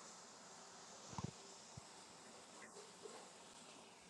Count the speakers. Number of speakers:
zero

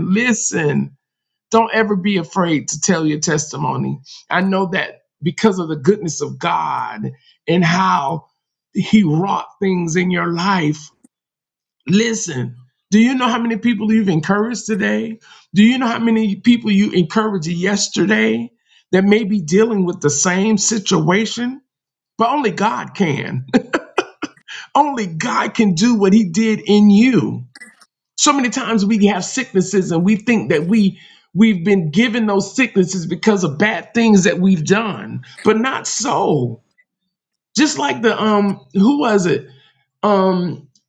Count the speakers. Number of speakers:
one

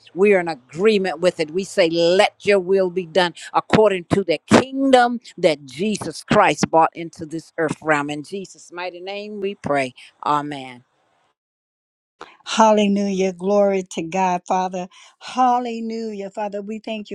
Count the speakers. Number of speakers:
two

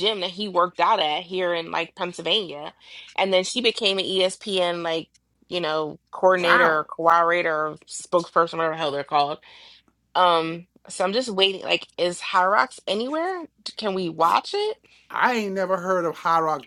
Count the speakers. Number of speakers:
two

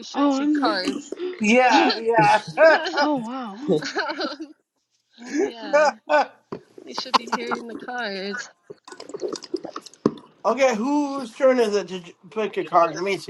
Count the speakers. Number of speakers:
four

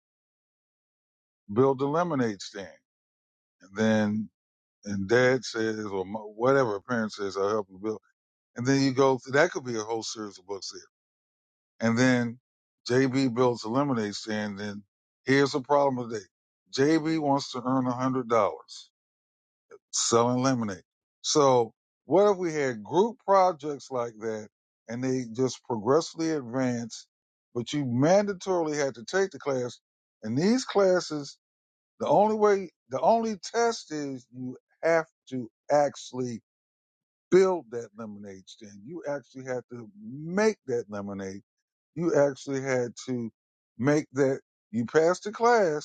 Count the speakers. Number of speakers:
one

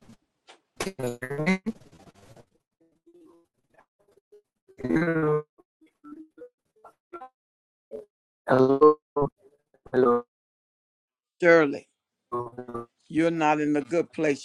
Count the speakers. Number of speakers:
two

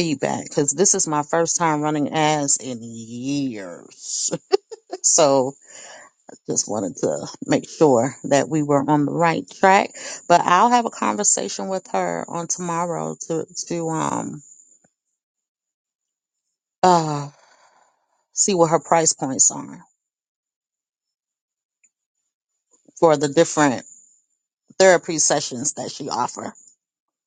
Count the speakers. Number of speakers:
one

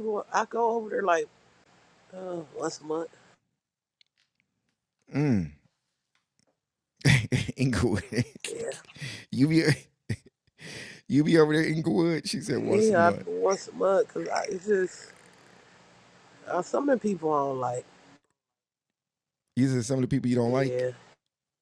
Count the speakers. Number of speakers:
two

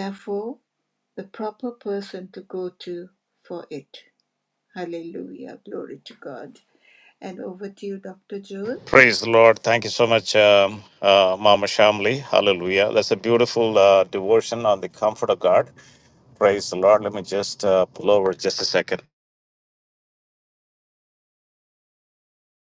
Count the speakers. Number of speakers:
two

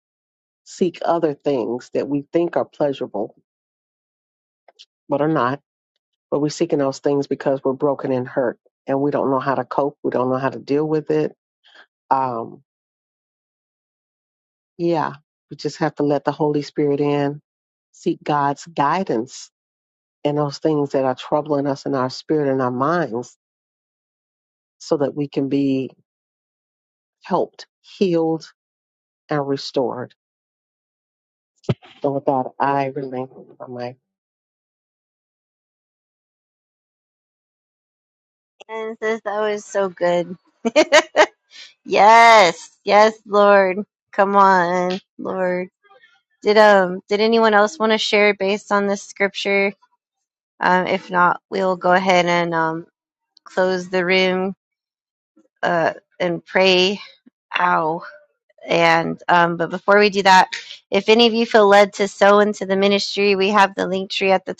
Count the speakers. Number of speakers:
two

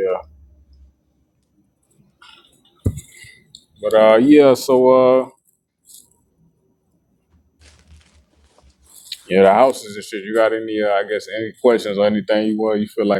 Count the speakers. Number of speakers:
one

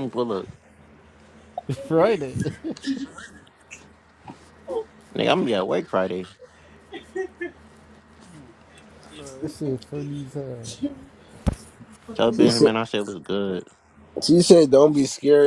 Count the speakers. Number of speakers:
three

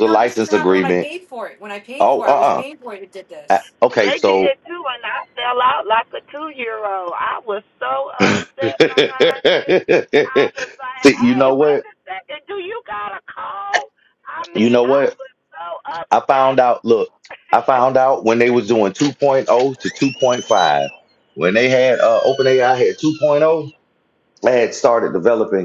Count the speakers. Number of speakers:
three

